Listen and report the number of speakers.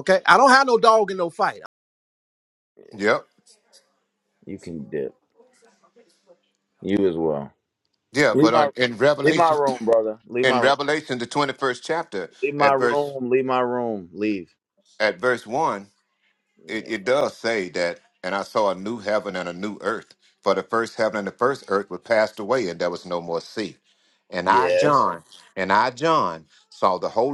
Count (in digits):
3